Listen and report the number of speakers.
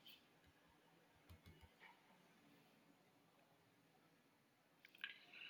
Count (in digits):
0